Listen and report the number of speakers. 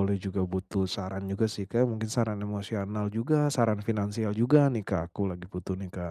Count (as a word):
one